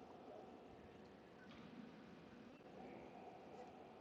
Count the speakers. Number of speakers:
0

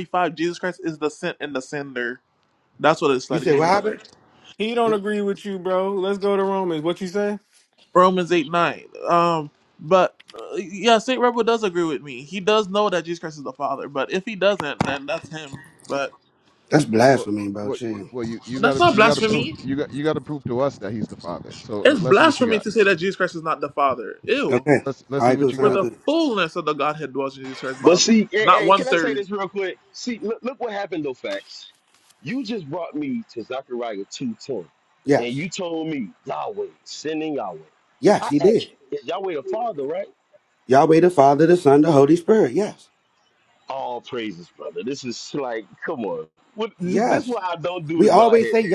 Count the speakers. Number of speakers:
5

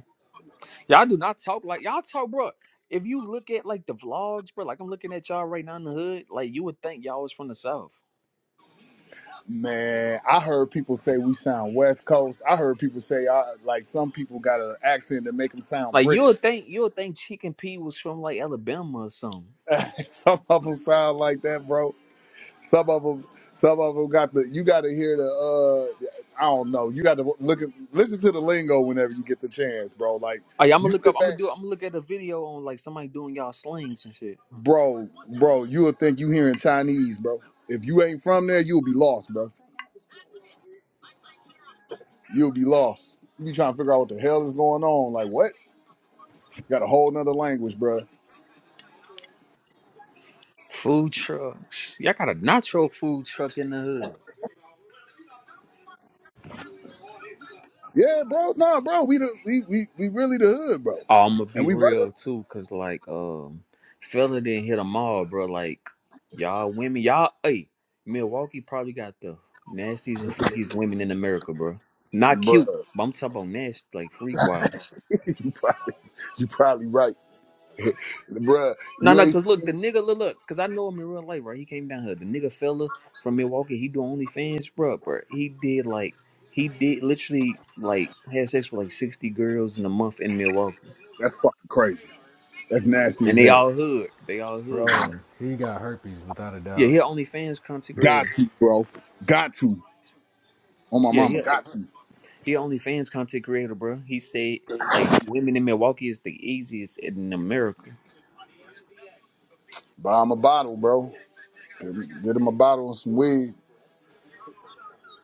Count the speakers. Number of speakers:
3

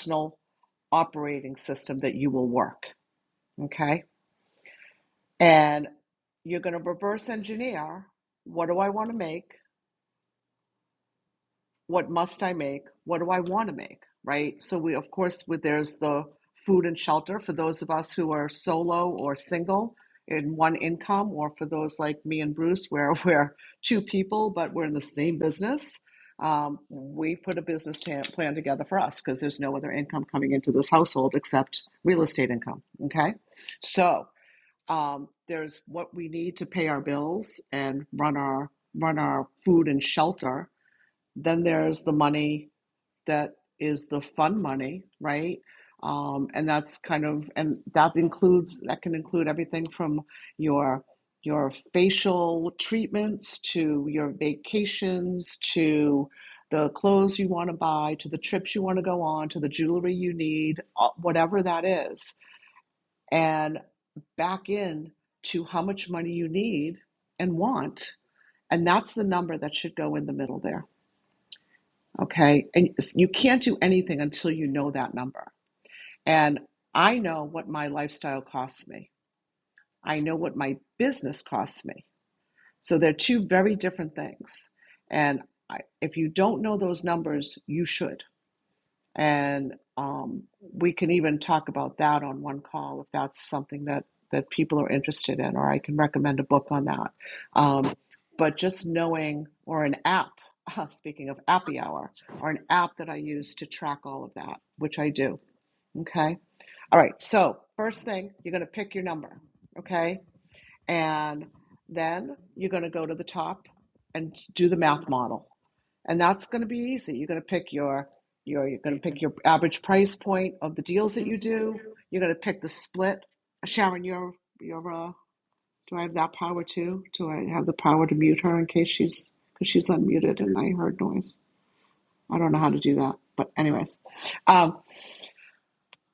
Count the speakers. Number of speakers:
1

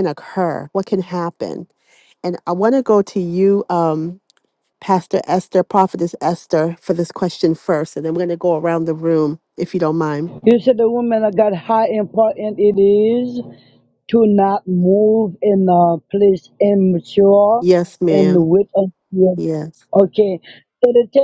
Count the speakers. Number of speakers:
2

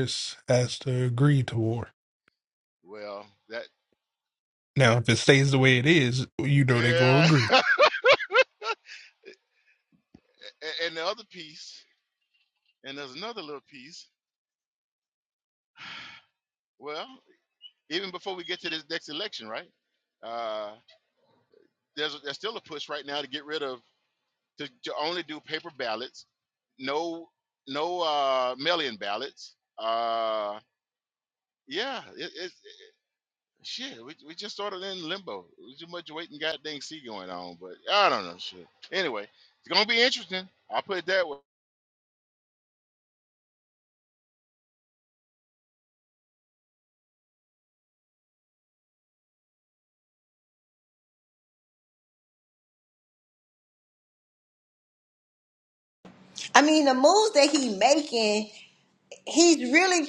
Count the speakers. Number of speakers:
3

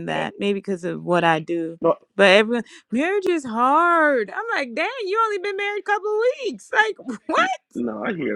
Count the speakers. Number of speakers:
2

